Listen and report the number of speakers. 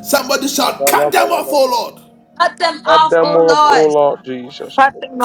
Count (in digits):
3